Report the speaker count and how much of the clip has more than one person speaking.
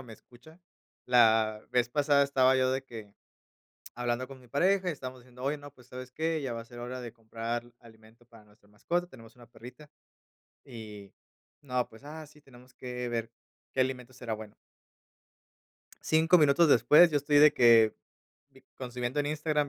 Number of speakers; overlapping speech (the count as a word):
one, no overlap